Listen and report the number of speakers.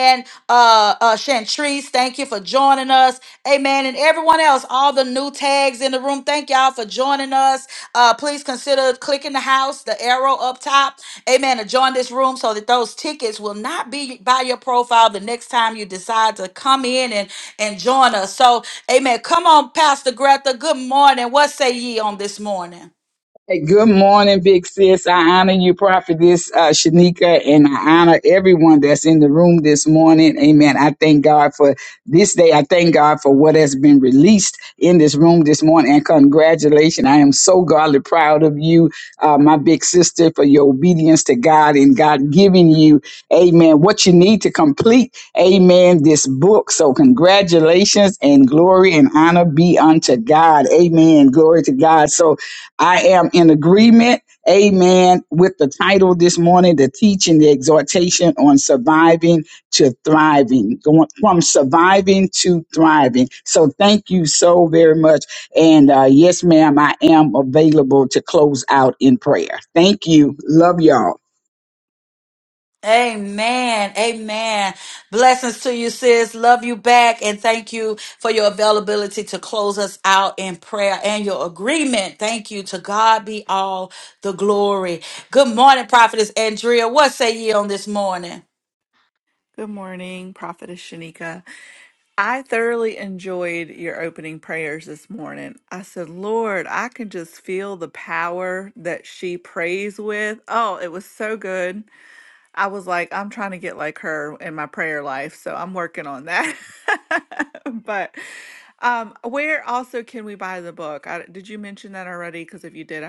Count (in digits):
3